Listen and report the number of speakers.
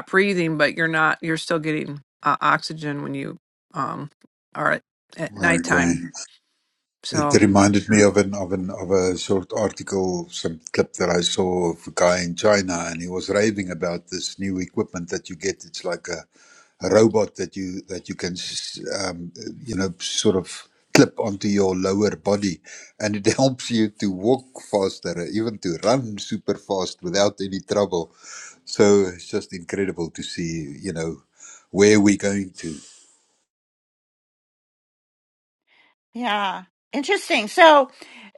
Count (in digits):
3